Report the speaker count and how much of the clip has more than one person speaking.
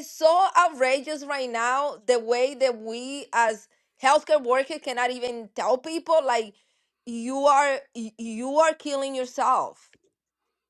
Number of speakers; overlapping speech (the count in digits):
1, no overlap